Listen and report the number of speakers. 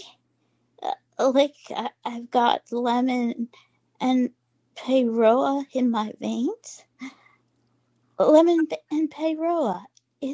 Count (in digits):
1